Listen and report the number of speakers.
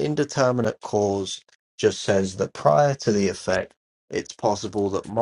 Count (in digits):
1